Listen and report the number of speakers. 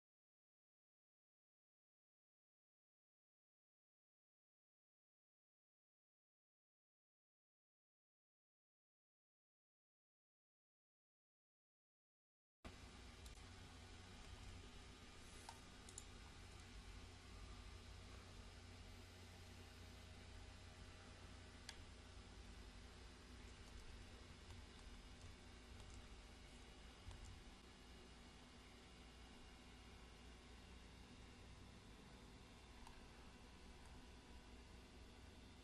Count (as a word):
zero